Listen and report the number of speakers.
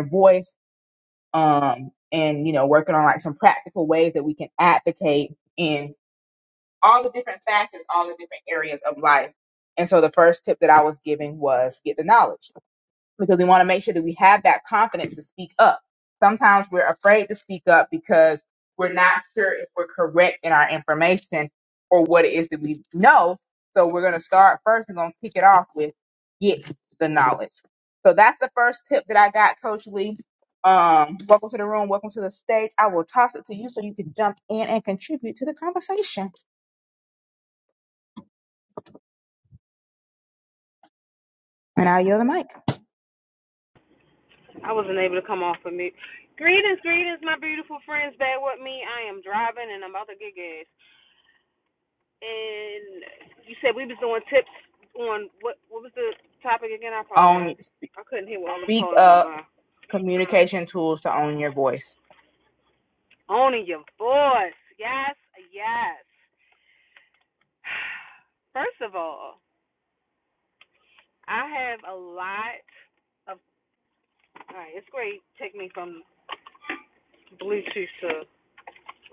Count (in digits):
2